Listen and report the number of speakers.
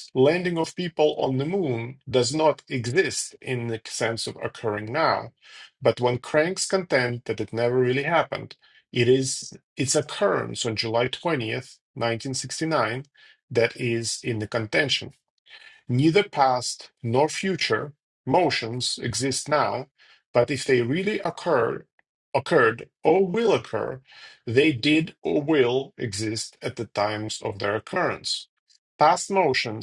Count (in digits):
1